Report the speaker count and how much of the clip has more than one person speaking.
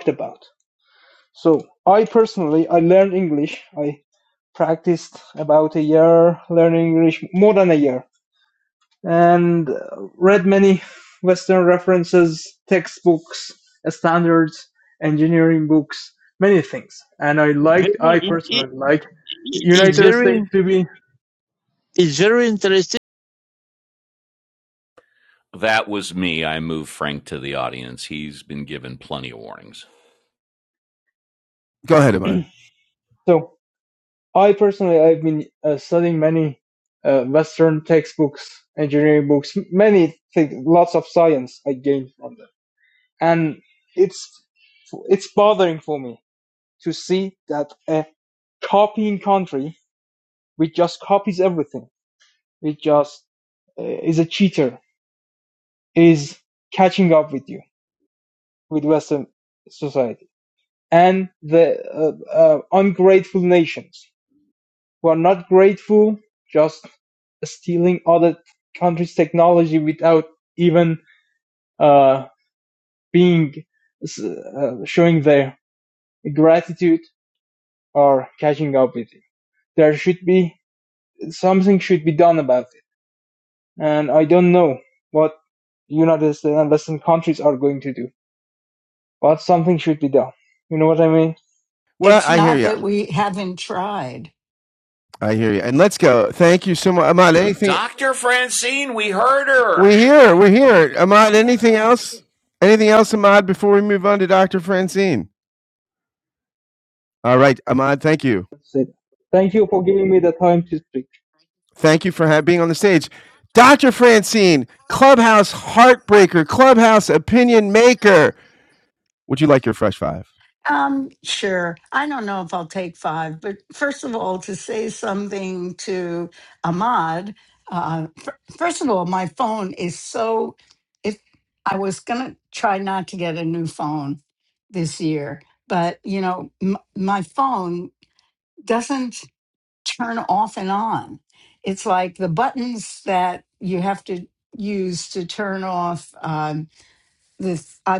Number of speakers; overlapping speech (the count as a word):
five, about 2%